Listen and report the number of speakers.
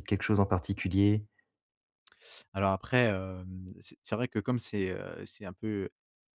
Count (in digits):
2